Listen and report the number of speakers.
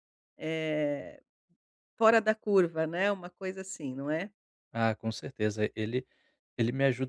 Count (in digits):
2